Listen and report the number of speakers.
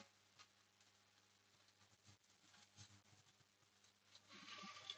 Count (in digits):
0